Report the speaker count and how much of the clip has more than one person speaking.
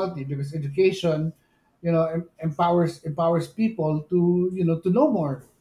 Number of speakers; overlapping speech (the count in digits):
1, no overlap